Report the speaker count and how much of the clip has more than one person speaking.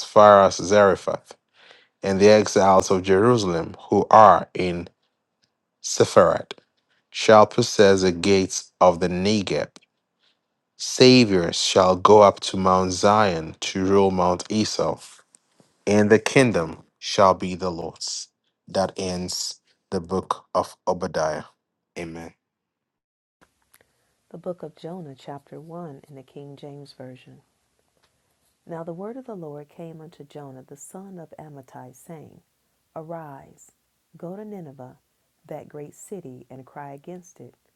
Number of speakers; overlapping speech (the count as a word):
two, no overlap